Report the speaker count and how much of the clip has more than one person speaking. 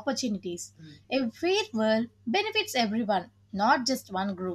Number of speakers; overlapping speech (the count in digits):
1, no overlap